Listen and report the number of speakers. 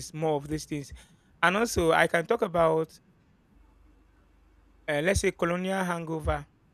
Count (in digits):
1